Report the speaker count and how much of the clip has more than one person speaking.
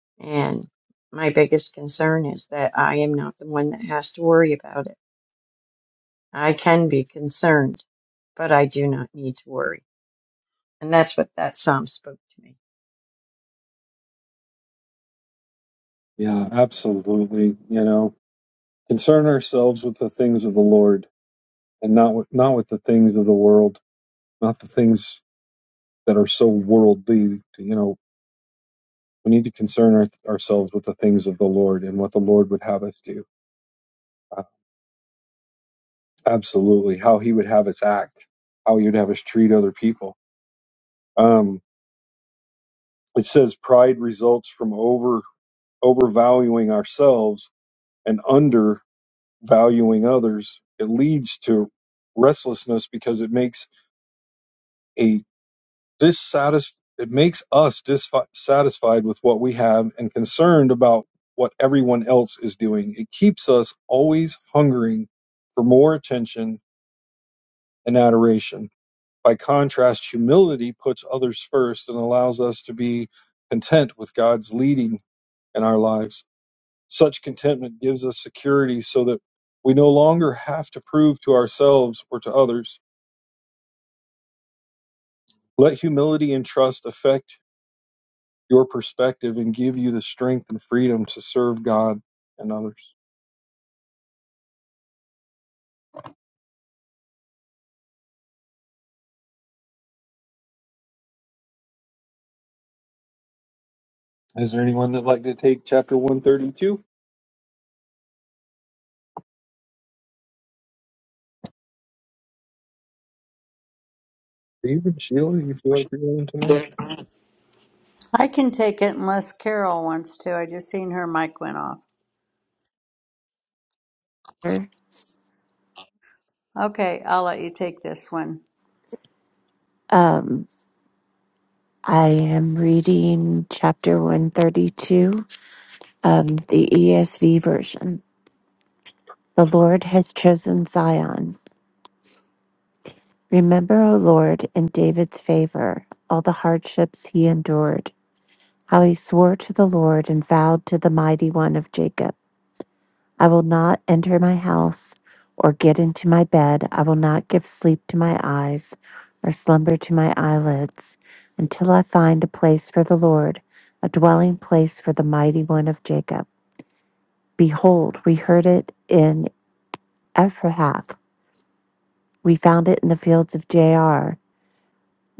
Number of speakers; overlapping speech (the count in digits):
4, no overlap